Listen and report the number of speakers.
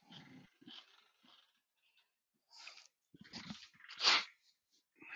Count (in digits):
0